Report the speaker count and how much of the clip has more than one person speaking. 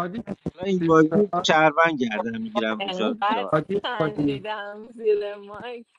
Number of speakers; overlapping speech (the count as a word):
three, about 31%